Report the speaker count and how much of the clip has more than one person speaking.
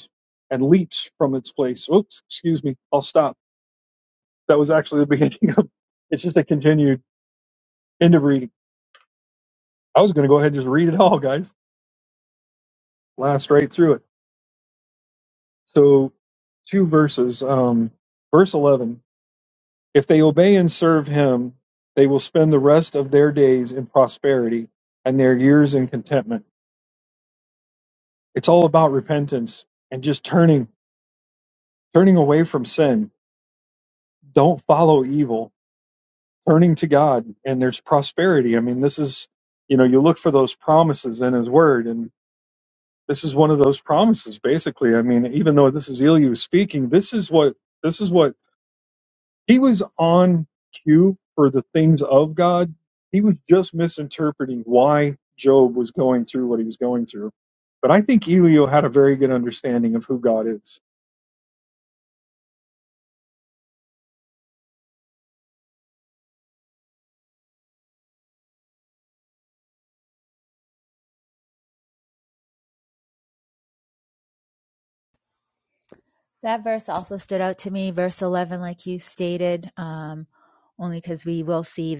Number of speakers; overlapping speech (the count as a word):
two, no overlap